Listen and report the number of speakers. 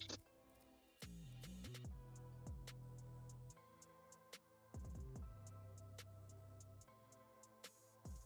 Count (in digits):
0